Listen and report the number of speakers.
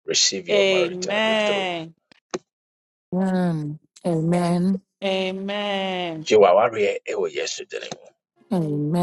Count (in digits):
3